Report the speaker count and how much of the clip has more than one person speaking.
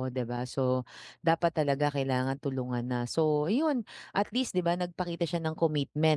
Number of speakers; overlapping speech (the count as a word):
one, no overlap